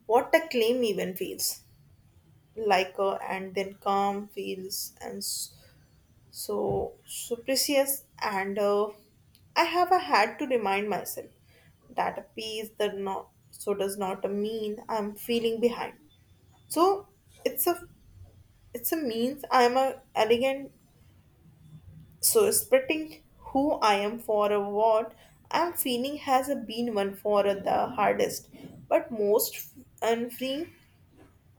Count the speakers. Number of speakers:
1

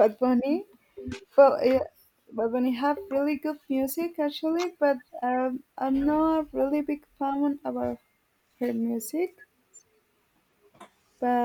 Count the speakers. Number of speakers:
1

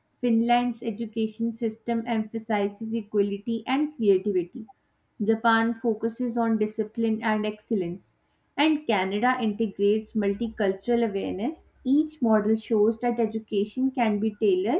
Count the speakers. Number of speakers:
1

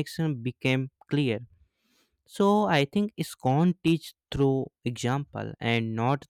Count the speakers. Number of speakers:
1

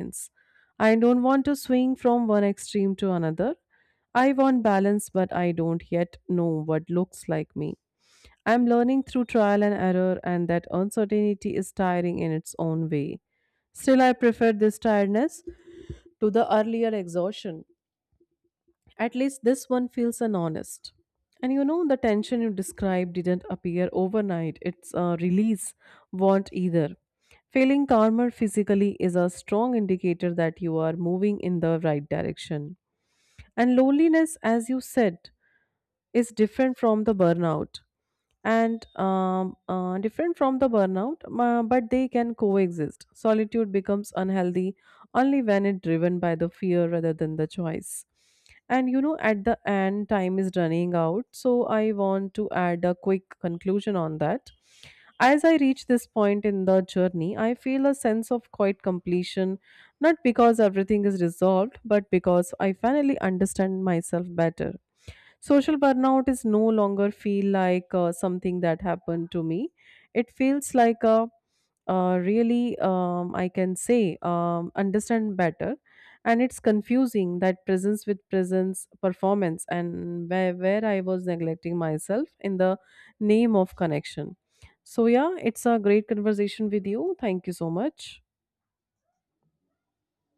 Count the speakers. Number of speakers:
1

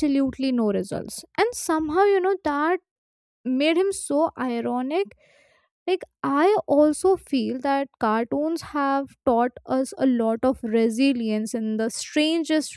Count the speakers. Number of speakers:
1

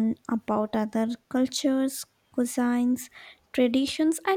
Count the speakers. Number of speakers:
1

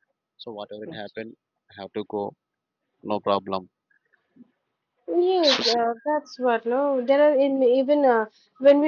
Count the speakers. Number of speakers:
2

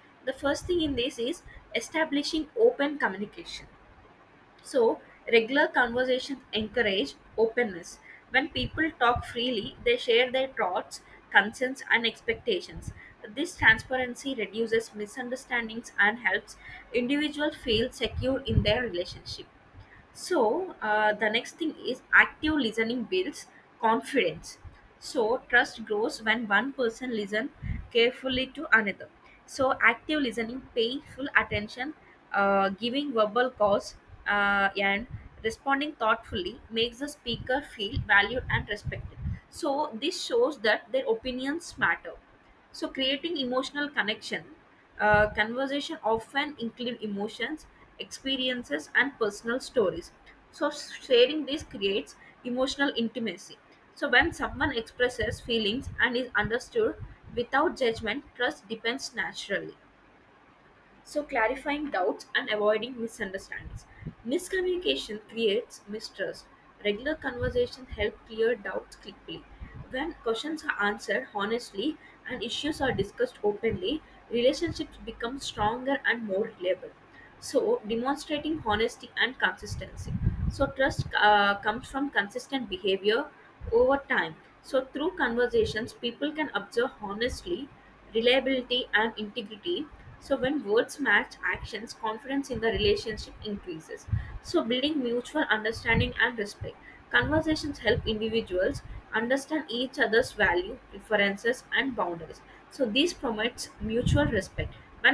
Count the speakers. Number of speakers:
1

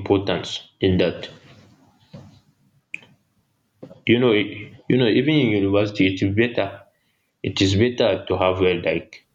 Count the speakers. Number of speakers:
1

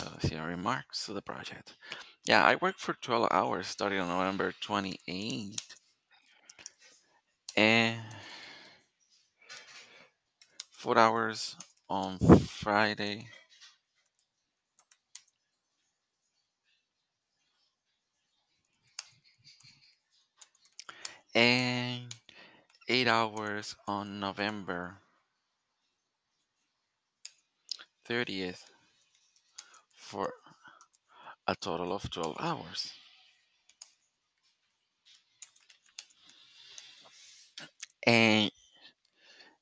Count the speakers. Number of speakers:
1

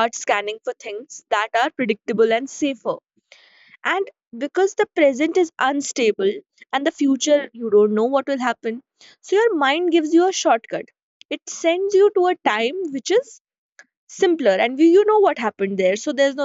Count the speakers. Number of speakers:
1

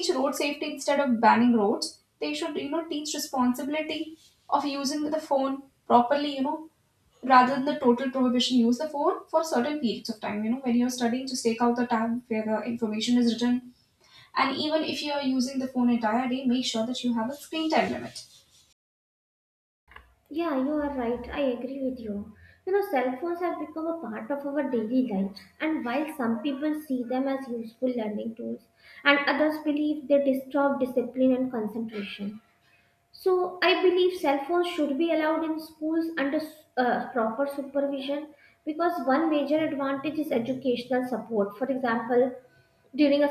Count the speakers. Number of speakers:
2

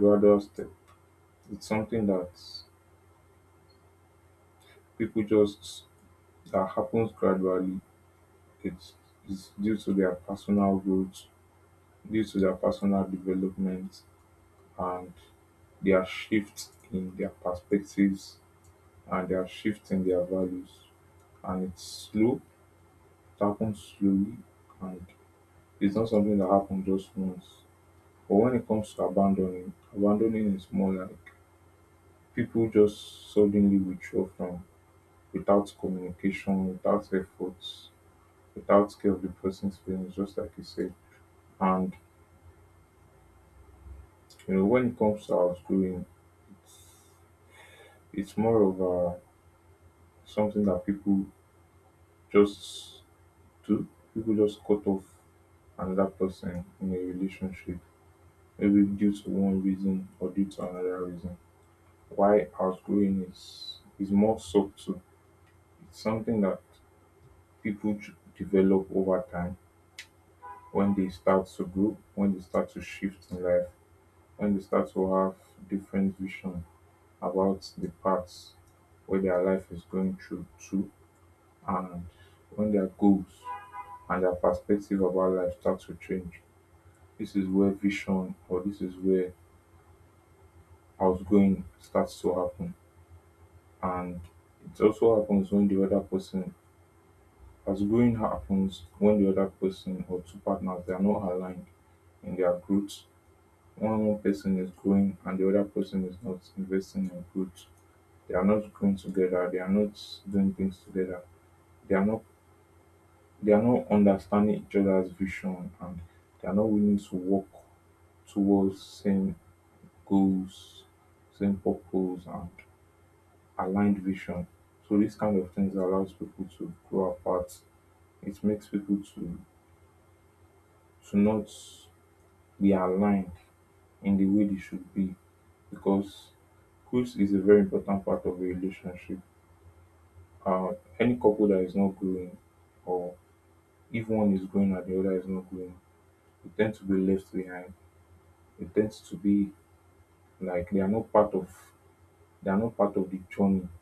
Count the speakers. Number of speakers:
1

